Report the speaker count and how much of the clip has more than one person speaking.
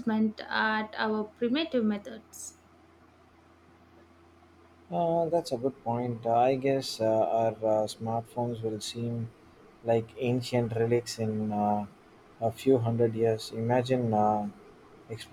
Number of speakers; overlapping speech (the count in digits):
2, no overlap